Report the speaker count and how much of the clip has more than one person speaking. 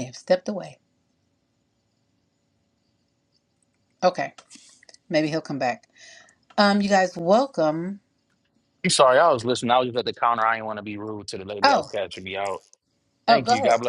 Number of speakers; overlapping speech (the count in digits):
2, about 6%